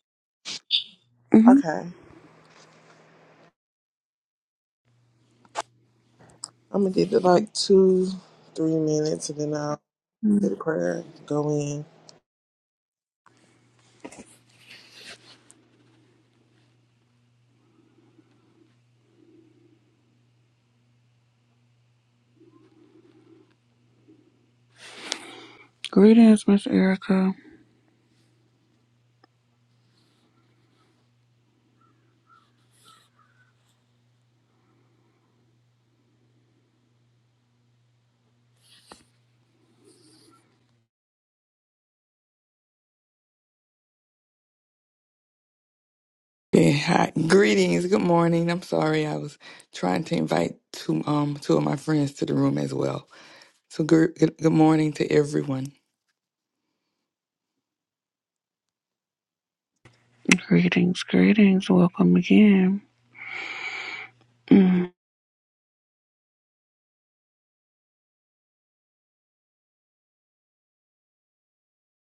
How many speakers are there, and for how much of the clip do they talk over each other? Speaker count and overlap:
three, under 1%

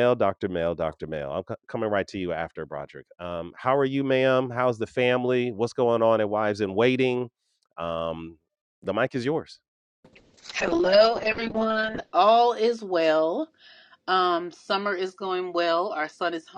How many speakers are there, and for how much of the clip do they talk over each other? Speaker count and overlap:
two, no overlap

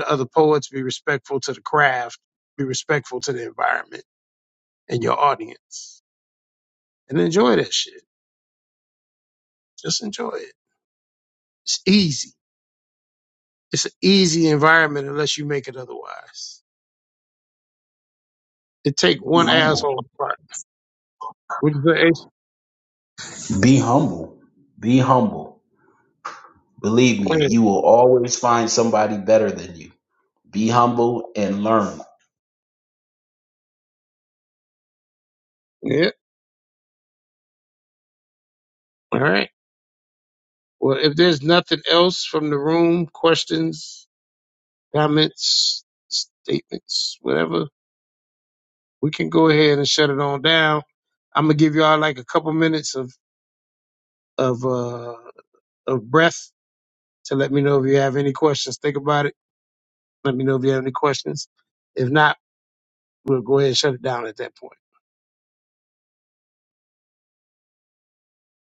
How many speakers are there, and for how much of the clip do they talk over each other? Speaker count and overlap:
two, about 1%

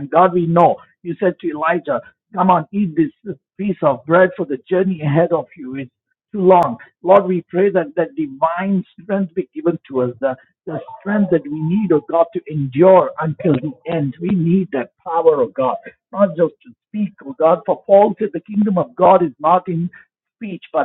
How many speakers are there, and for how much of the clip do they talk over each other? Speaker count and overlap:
one, no overlap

